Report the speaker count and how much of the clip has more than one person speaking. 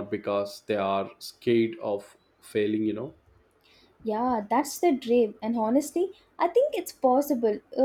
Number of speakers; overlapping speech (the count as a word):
two, no overlap